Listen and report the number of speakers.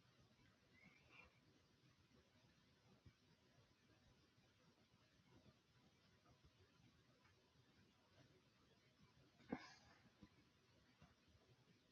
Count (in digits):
0